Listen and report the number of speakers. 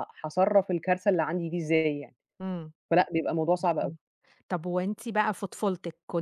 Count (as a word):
two